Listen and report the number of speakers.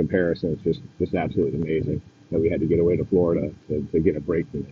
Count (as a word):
one